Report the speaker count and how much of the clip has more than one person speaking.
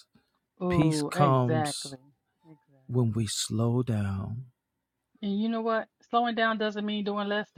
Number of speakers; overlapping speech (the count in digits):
2, about 16%